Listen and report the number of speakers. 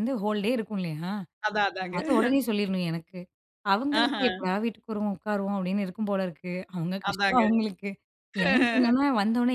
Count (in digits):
2